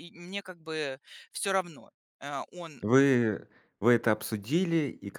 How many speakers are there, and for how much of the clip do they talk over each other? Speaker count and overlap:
2, no overlap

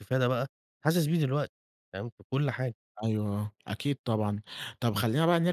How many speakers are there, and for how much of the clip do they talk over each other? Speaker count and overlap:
2, no overlap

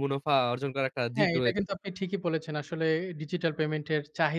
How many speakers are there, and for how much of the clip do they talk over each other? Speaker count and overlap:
2, about 13%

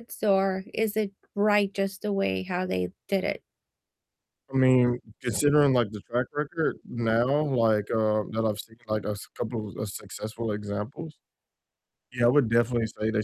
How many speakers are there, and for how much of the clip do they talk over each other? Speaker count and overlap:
2, no overlap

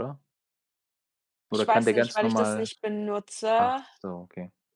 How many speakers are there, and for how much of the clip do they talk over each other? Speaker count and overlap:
2, about 29%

